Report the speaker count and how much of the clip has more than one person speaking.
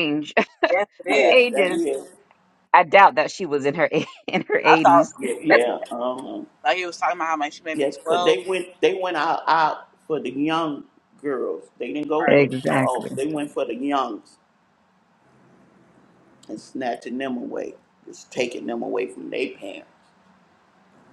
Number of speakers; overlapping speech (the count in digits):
3, about 13%